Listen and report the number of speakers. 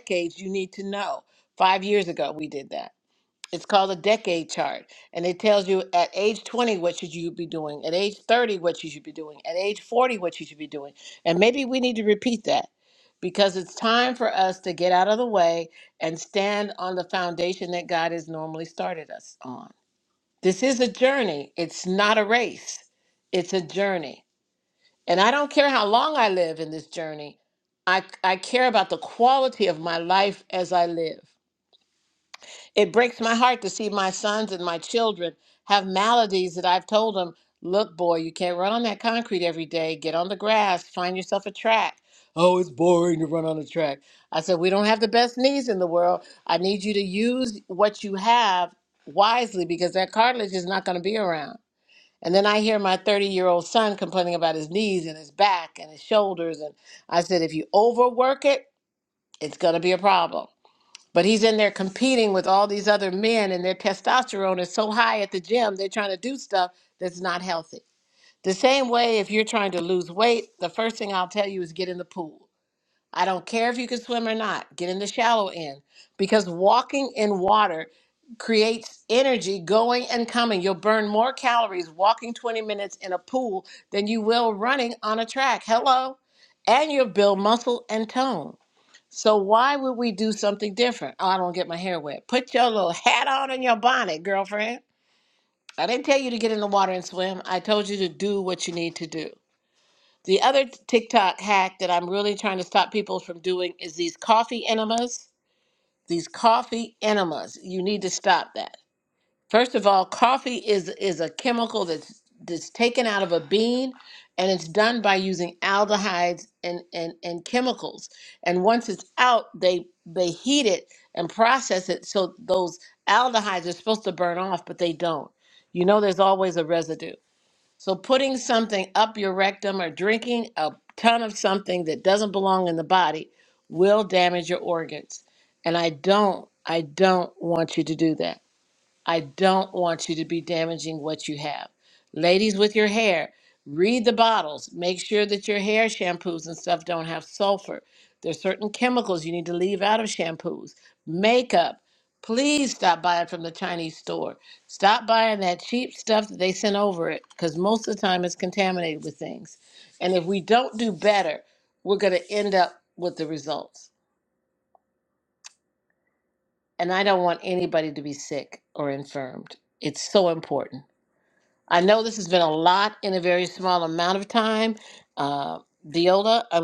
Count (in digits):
1